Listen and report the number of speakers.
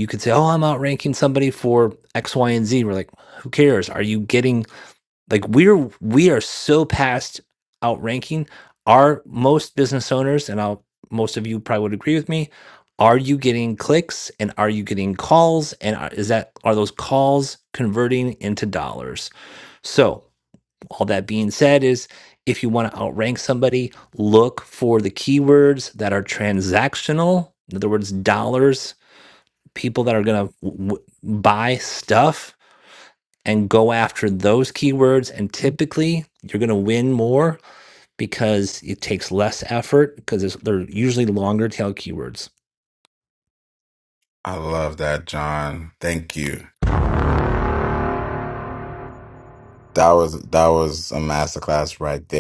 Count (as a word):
two